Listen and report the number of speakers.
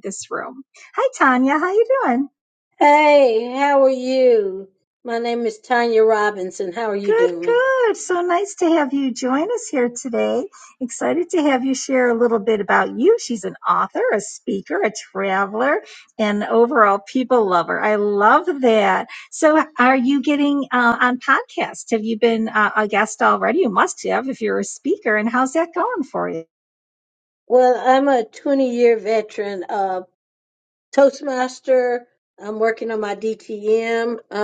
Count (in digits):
2